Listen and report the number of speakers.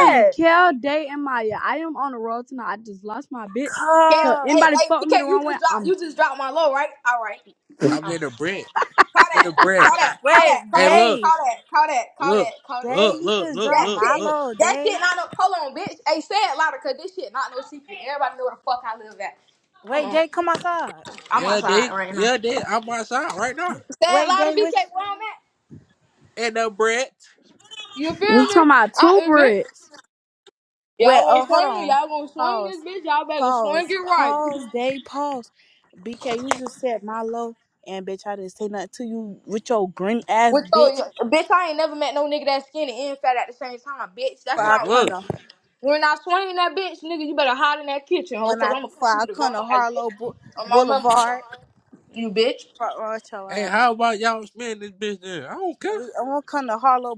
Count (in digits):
4